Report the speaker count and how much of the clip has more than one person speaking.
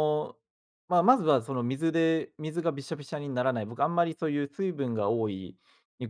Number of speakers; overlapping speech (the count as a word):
one, no overlap